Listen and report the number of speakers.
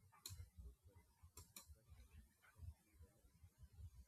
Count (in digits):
0